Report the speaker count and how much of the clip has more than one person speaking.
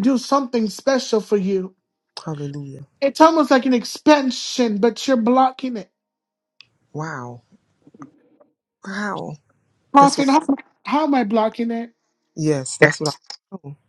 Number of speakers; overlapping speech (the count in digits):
2, about 2%